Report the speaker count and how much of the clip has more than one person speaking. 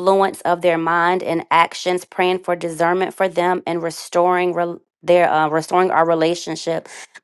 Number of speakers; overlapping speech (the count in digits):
1, no overlap